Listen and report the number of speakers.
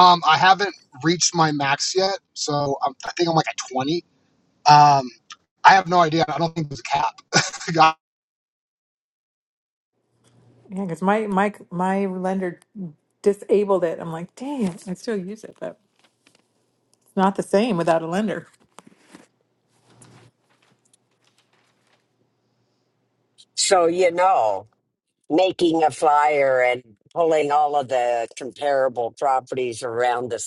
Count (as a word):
three